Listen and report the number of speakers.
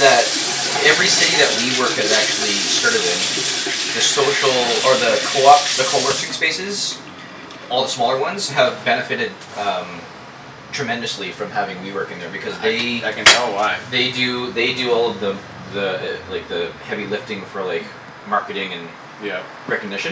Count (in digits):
2